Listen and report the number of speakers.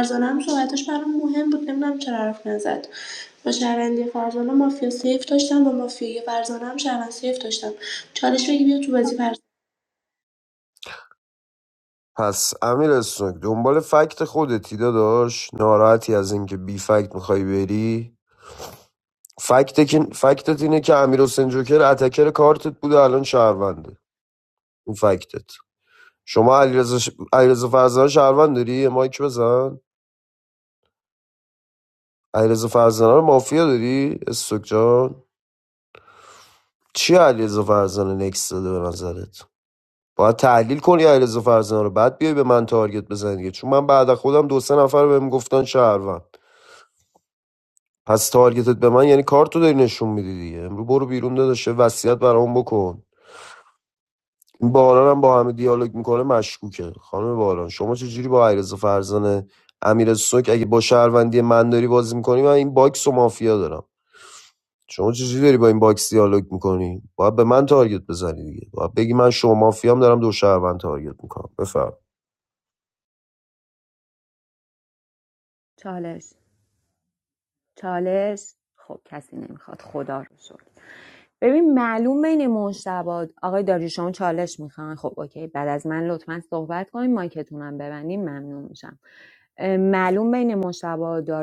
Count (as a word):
three